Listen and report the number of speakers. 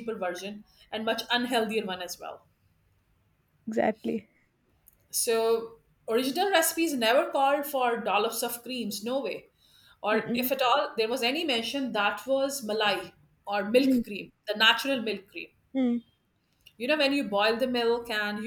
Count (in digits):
2